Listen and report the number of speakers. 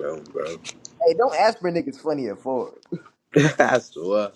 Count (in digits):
2